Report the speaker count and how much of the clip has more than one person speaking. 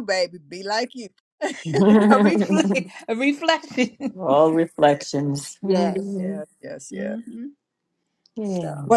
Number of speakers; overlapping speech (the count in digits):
3, about 16%